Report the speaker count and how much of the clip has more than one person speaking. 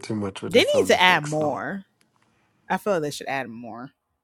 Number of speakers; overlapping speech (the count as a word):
two, about 26%